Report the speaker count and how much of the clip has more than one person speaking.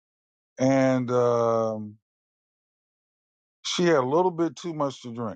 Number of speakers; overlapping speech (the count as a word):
one, no overlap